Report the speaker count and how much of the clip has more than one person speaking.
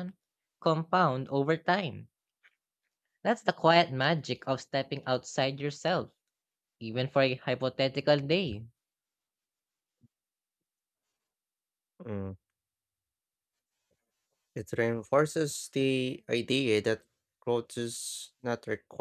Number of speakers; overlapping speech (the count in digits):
2, no overlap